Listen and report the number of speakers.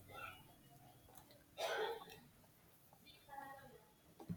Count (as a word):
zero